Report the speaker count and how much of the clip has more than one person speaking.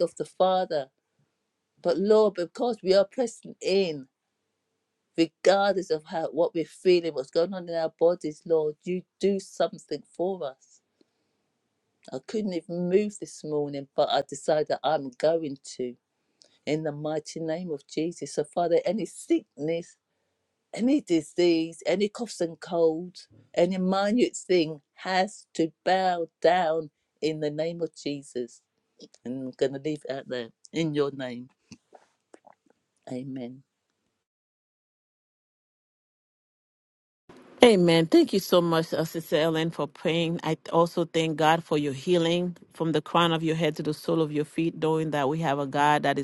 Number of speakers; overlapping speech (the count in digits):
2, no overlap